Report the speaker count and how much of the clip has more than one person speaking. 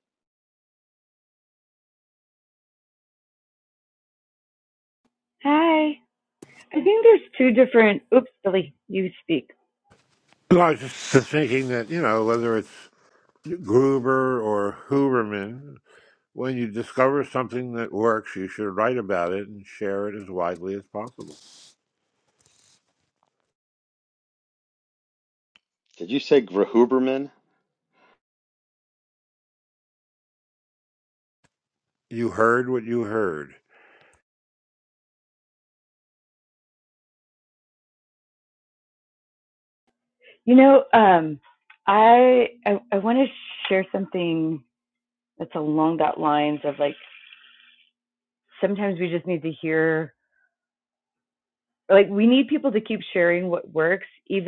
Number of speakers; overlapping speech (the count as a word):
three, no overlap